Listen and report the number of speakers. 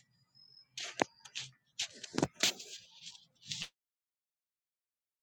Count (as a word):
zero